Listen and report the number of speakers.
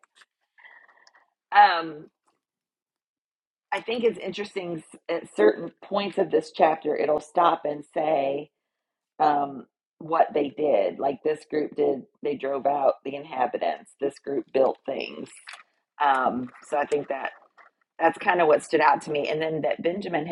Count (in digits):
1